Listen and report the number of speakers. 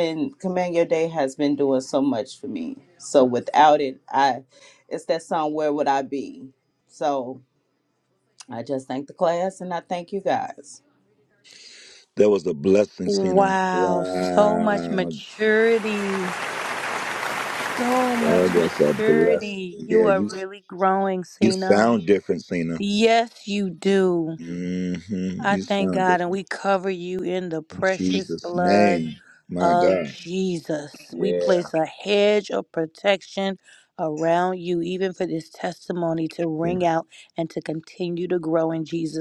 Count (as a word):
three